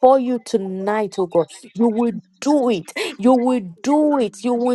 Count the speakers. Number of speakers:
1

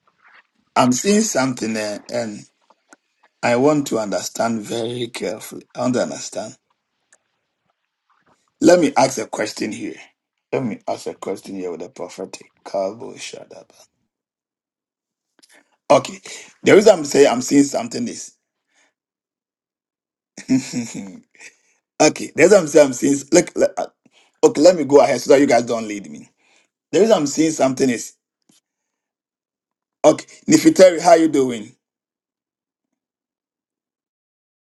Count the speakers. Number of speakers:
1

